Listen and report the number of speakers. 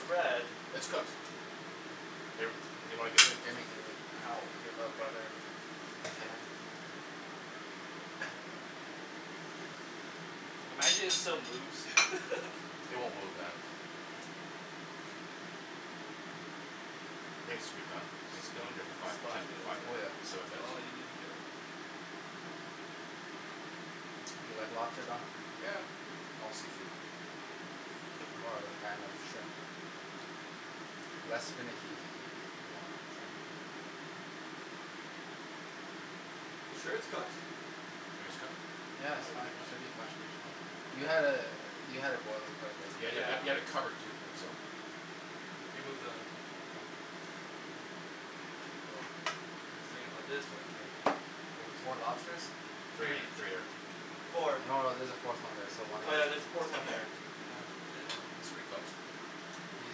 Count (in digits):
4